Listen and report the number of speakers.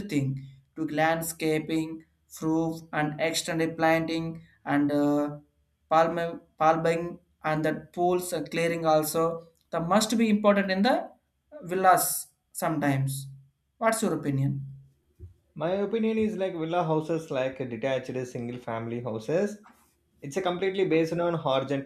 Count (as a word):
two